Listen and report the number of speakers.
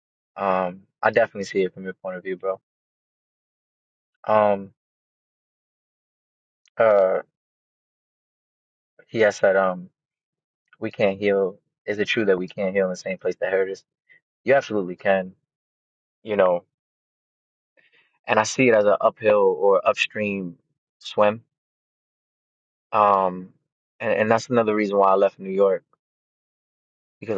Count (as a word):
one